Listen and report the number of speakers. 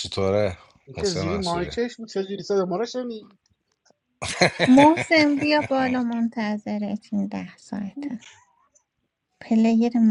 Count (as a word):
three